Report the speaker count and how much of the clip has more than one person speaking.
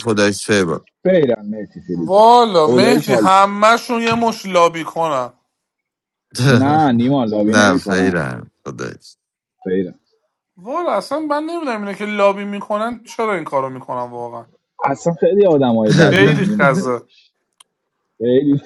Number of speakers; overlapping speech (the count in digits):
3, about 13%